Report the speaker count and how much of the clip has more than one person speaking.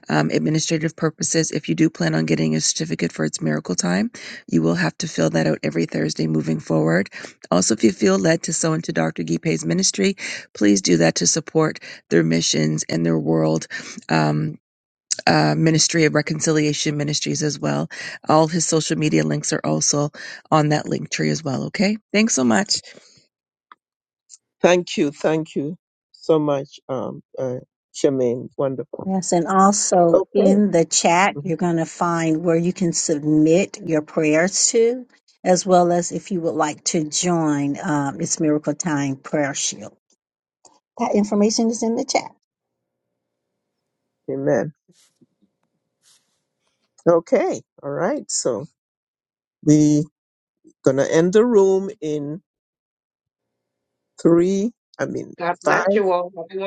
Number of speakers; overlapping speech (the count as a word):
four, about 2%